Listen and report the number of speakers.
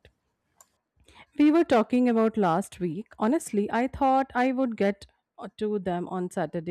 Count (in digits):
1